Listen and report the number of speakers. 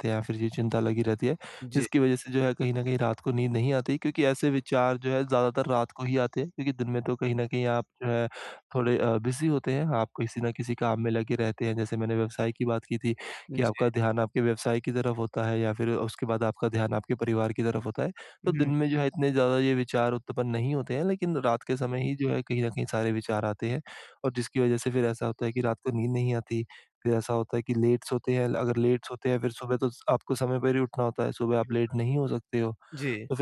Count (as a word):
two